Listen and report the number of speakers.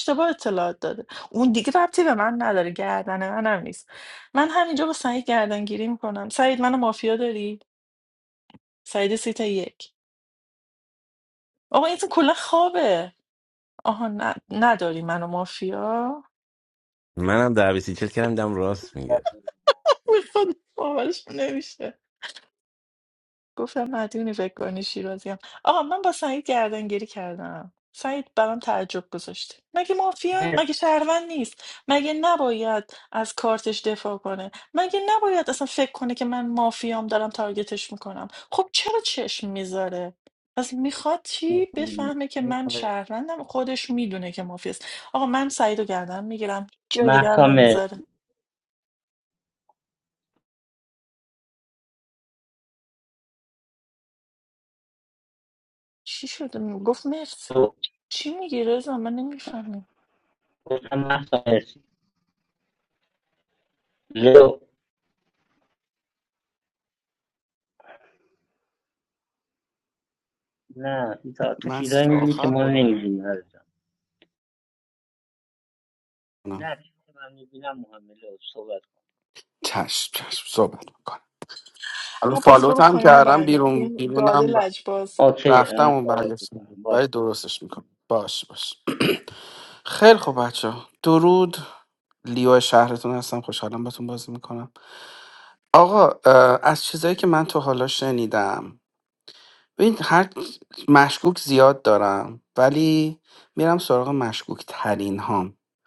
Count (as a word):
four